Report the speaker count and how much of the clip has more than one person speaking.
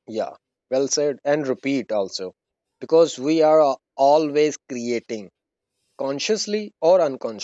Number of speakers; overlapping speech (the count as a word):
one, no overlap